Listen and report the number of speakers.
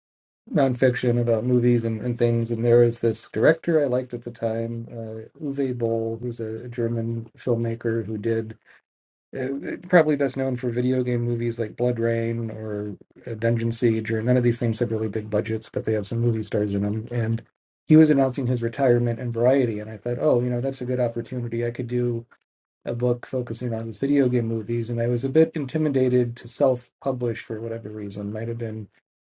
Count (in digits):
1